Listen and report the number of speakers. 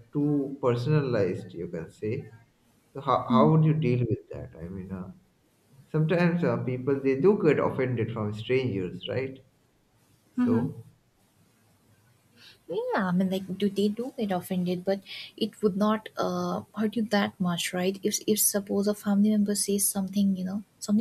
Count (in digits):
2